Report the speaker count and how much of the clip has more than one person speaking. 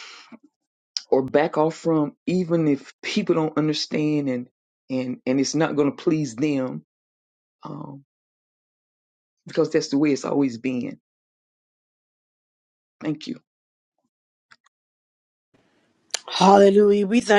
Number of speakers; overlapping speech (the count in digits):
2, no overlap